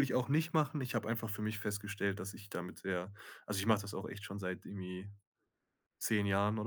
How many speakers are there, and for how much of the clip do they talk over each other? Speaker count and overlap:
1, no overlap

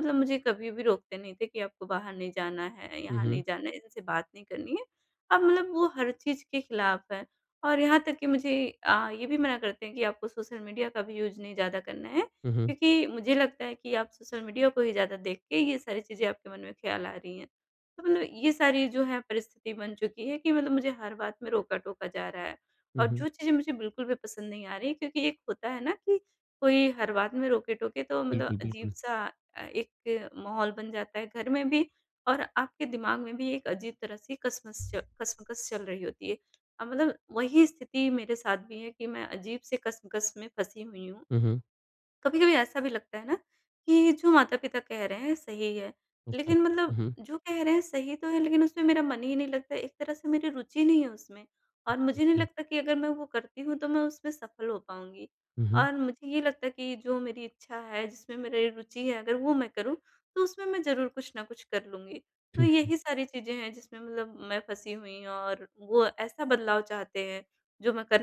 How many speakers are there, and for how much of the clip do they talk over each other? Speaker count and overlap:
2, about 3%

